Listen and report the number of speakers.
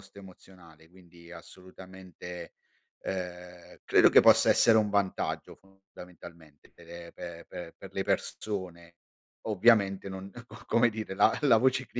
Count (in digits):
1